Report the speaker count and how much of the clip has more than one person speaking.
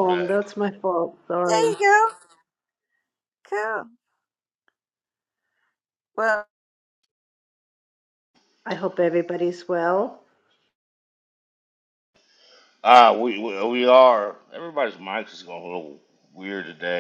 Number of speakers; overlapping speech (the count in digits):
3, about 4%